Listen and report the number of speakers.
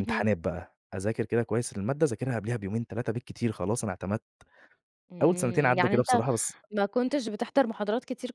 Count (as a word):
two